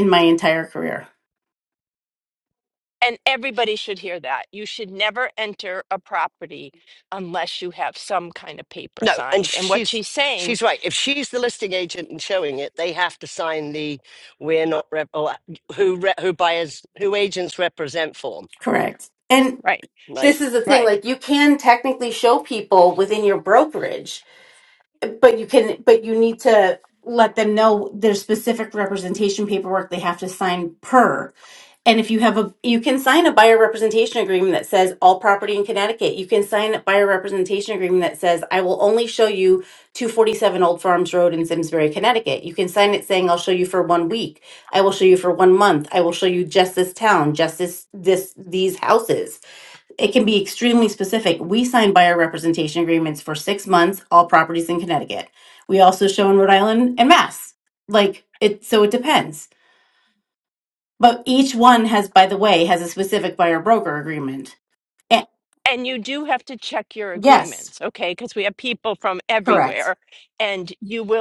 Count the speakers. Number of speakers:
three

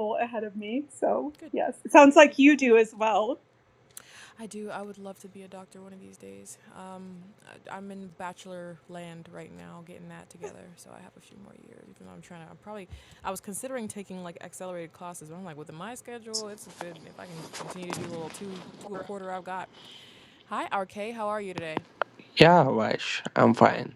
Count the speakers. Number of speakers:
three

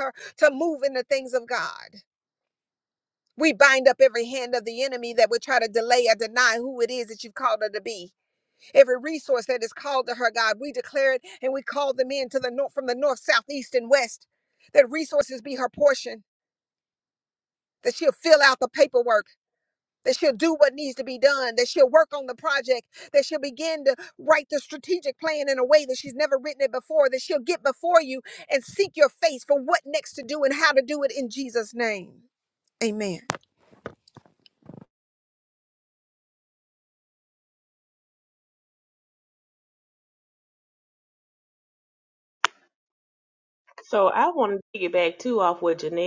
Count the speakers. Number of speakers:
two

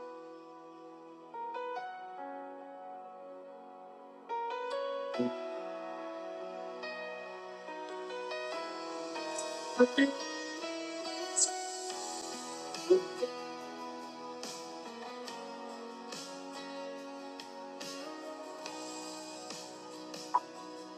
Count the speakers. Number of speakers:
zero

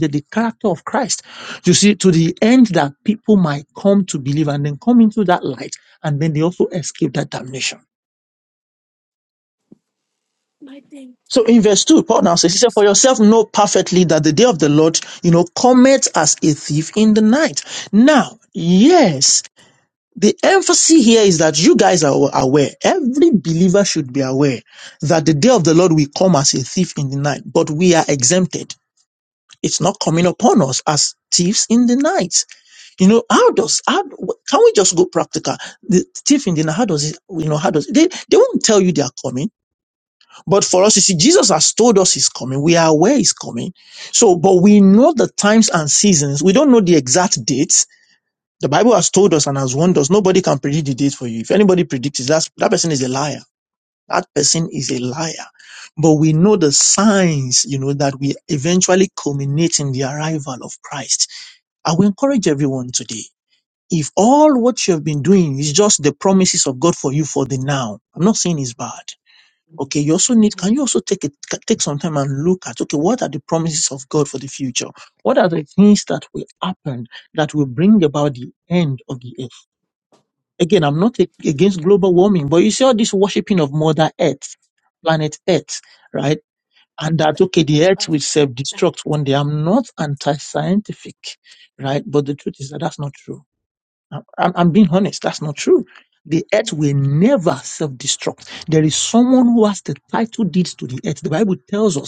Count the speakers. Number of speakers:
two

